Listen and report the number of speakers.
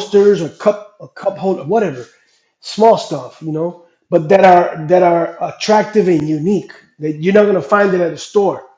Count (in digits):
1